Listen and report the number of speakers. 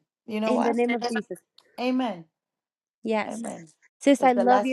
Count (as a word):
two